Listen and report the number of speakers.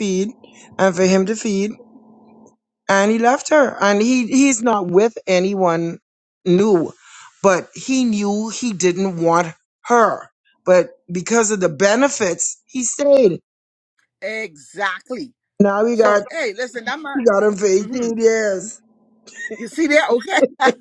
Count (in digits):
2